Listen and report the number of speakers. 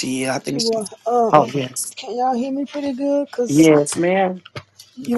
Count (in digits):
2